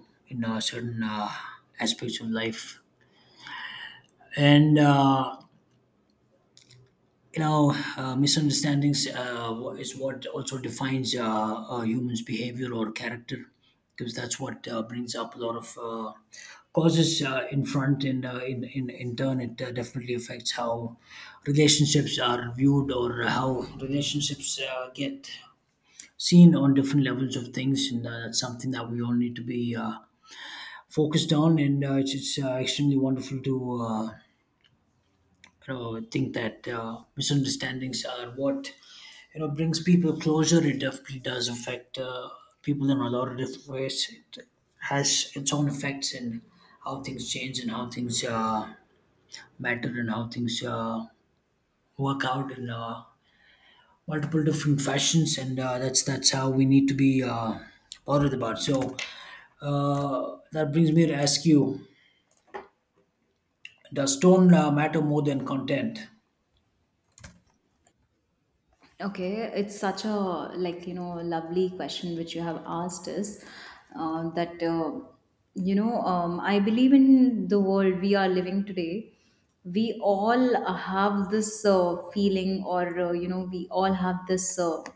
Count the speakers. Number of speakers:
2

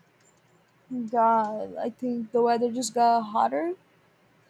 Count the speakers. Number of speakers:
1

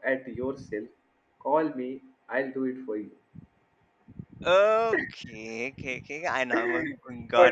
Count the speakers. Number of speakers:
2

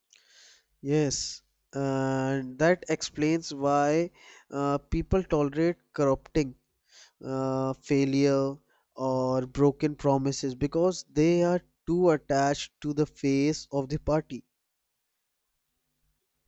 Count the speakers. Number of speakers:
1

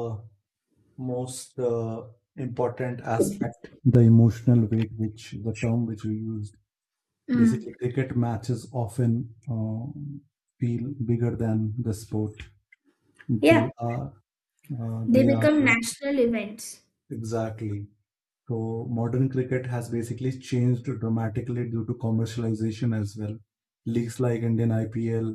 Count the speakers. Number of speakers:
2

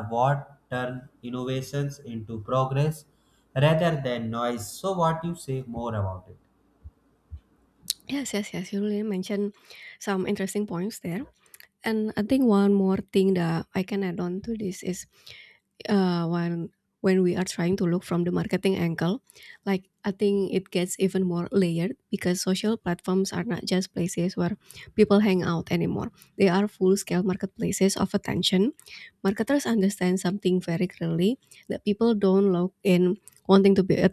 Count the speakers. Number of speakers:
2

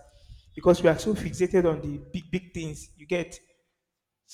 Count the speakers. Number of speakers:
1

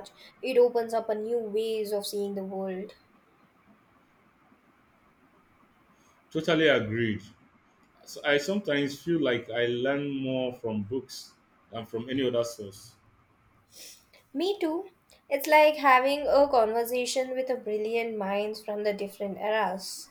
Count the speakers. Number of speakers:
2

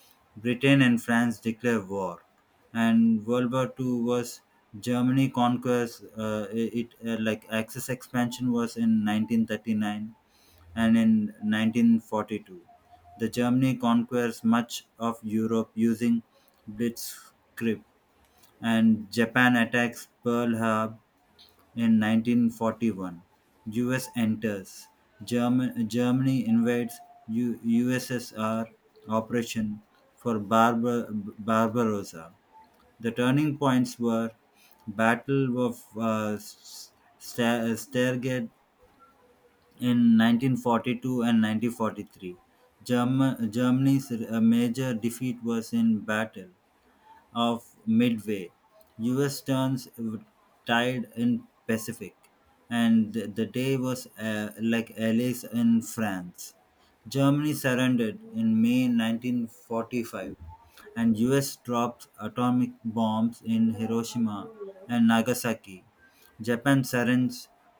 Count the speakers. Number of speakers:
1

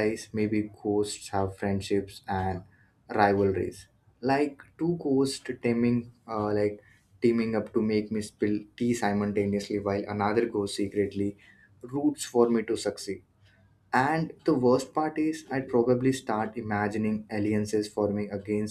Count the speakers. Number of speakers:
1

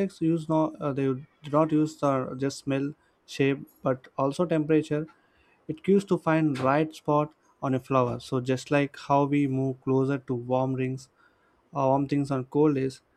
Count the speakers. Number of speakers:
1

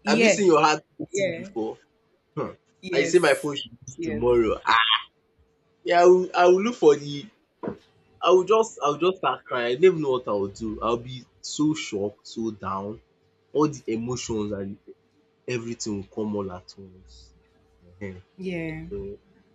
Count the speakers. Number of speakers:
2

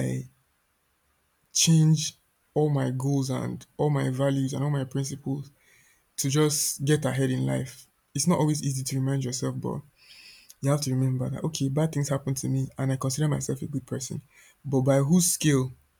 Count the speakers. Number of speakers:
1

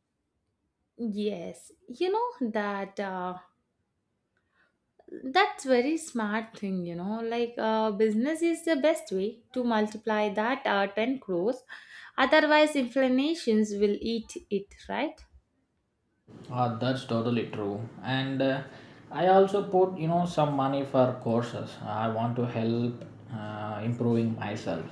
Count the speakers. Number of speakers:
2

